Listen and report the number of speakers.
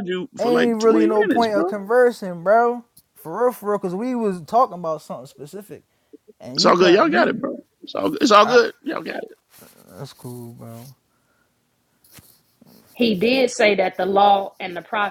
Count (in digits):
3